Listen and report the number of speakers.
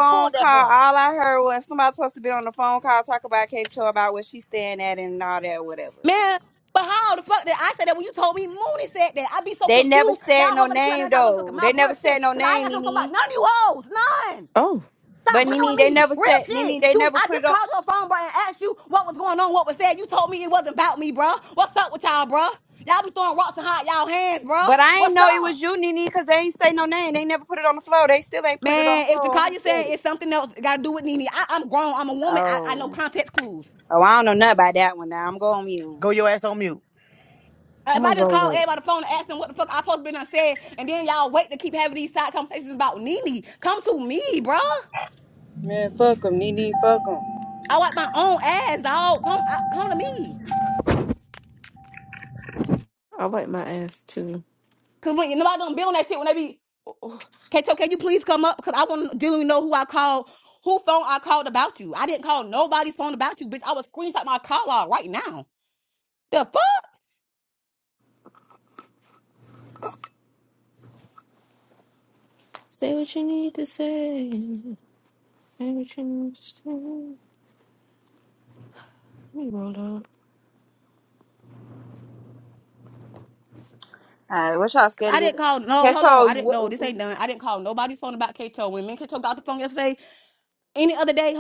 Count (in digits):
5